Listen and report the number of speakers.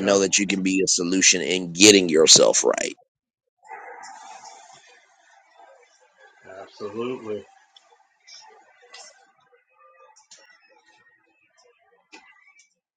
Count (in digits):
2